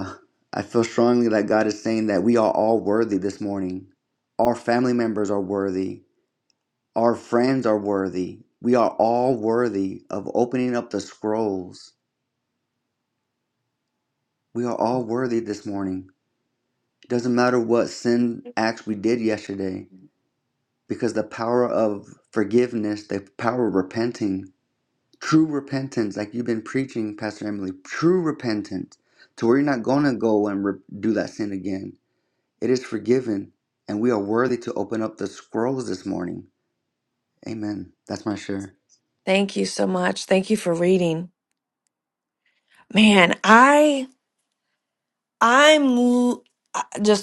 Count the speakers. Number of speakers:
2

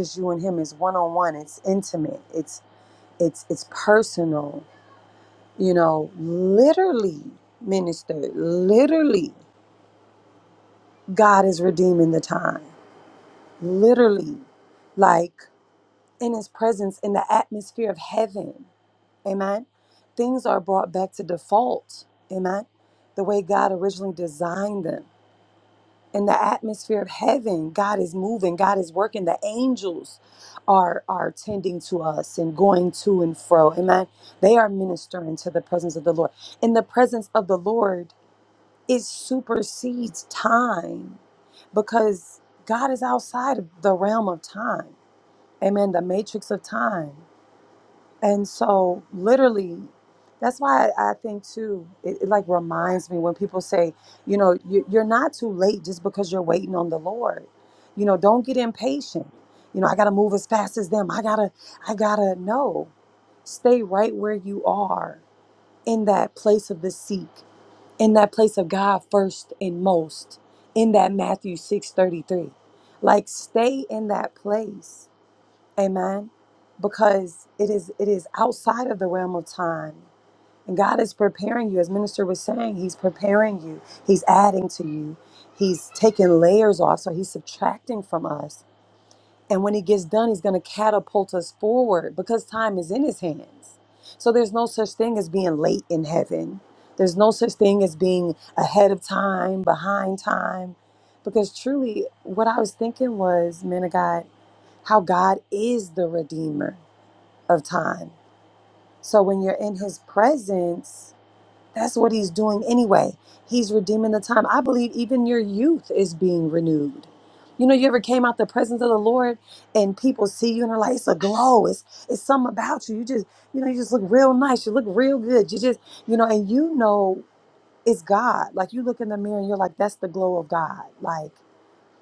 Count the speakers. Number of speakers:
1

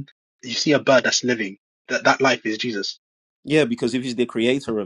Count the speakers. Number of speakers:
2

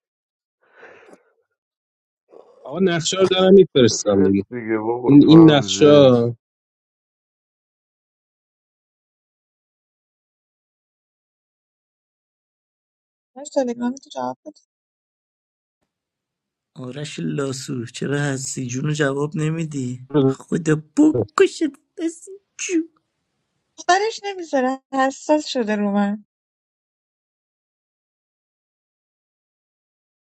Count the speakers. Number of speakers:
4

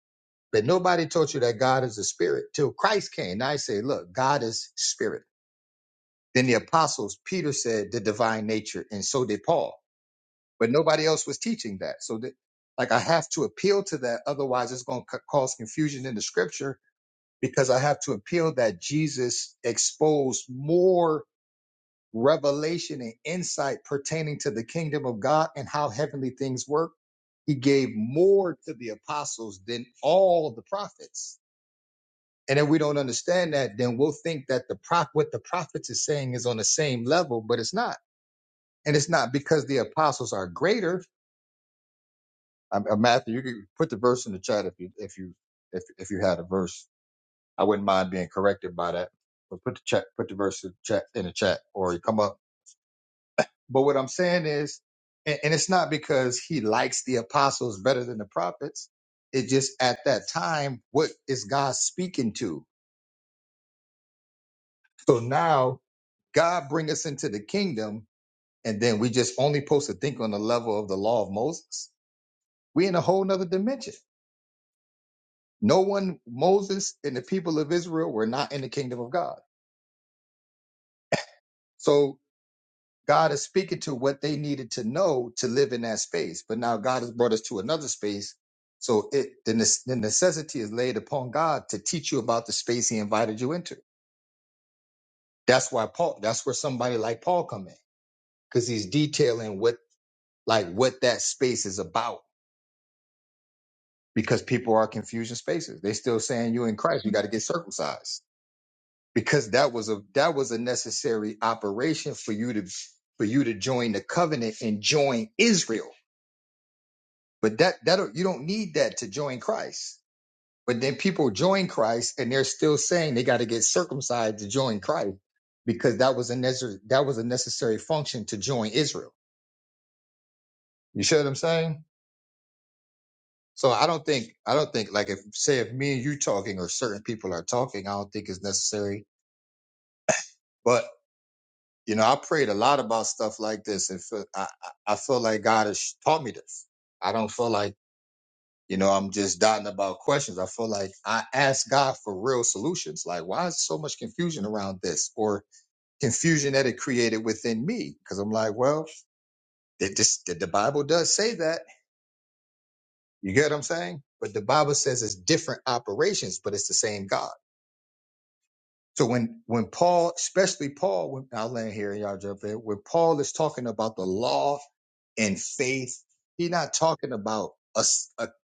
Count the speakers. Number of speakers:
1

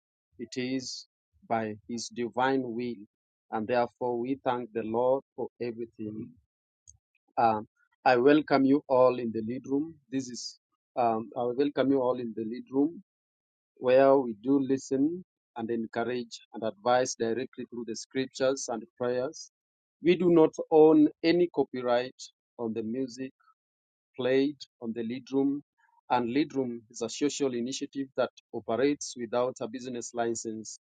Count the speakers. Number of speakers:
1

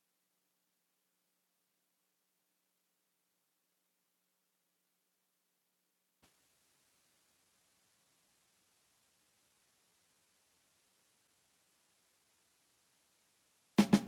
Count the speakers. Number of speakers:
0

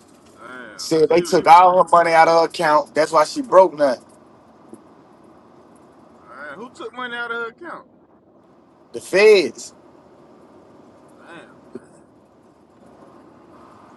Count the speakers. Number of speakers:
2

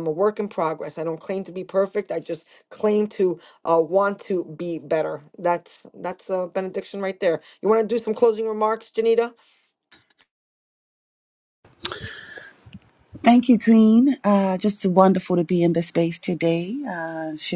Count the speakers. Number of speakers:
2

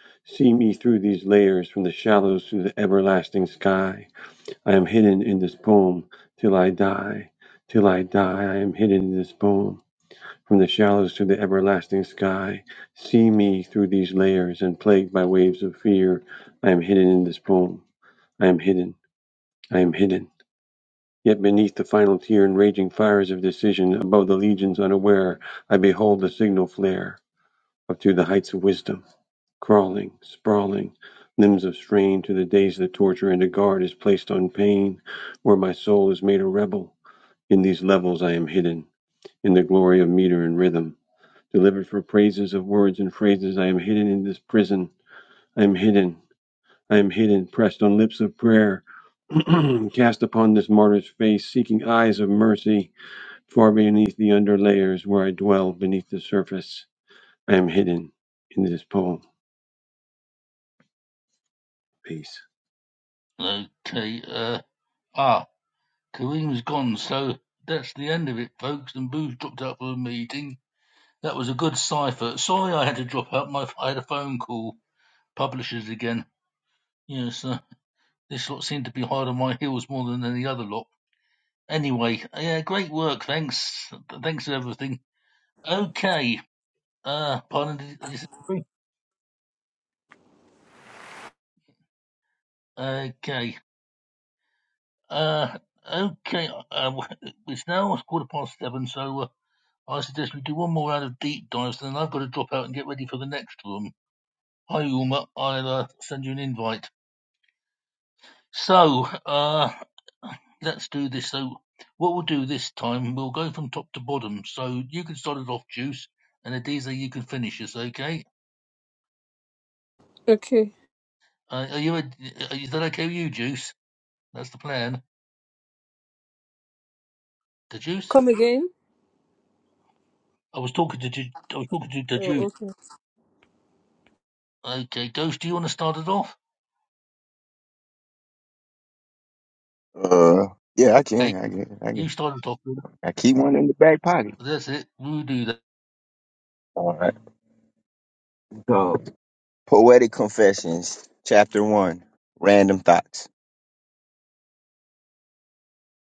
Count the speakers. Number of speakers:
4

